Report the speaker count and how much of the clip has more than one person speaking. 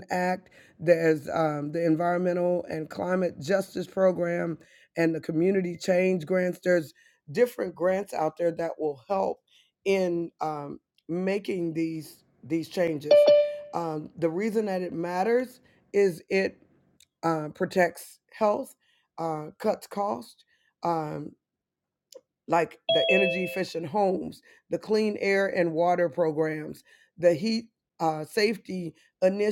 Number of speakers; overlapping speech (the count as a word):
one, no overlap